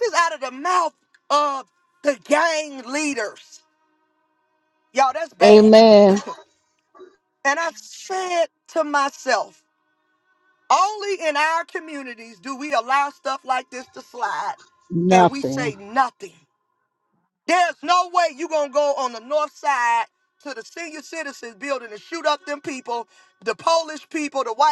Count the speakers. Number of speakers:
2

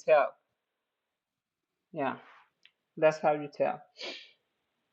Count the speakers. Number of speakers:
1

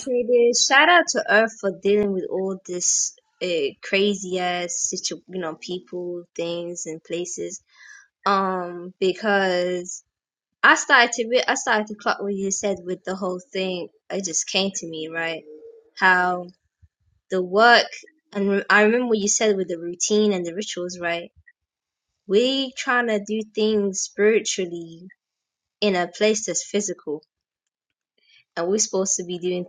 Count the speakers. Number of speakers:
1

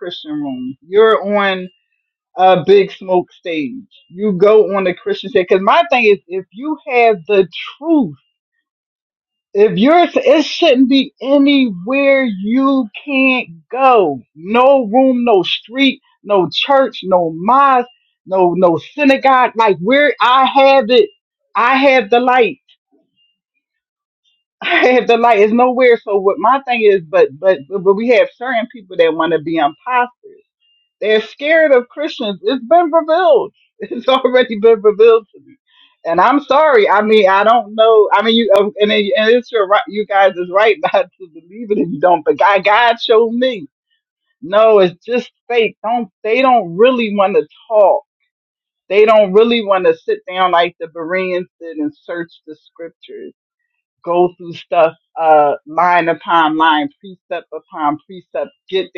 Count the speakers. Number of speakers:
1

